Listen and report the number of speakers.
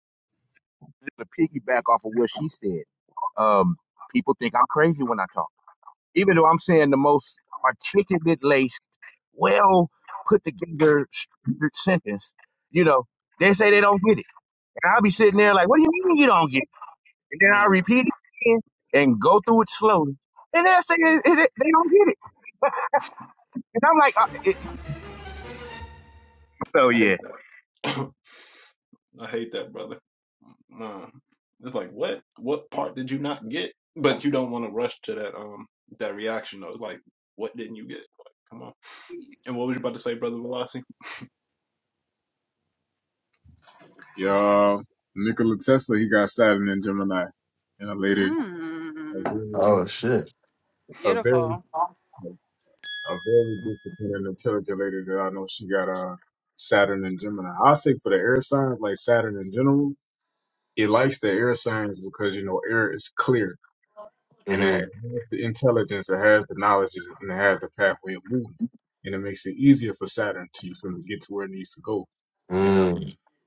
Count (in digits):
5